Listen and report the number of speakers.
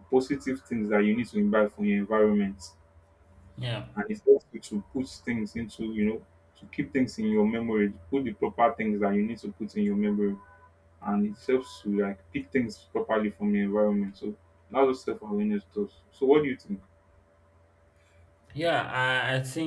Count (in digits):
2